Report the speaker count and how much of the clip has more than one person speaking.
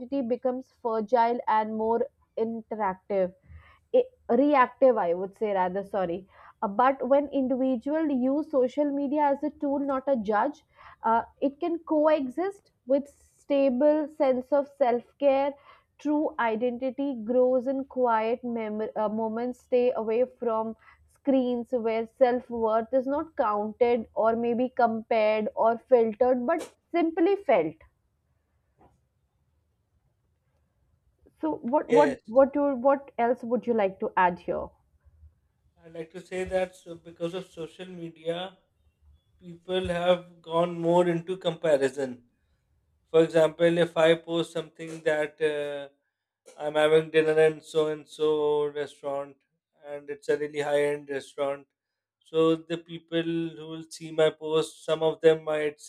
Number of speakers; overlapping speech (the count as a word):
two, about 1%